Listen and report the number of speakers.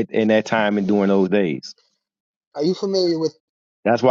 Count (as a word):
two